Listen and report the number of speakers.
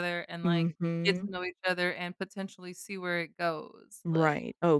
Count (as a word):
two